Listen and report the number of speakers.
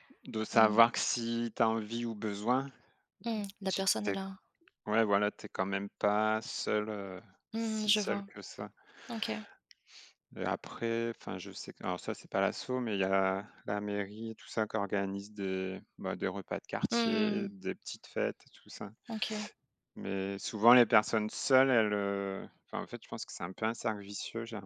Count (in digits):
2